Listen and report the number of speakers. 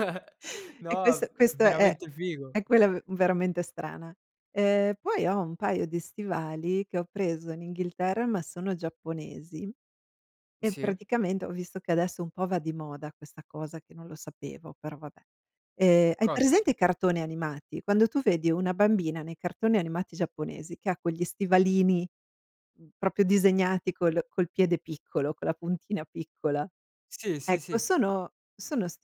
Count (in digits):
2